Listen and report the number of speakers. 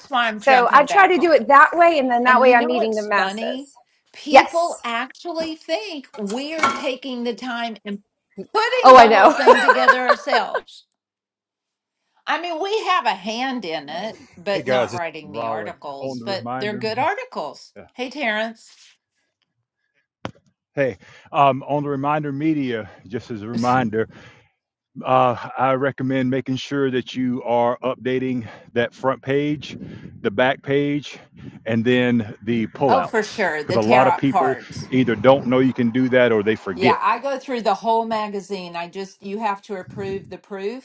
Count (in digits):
3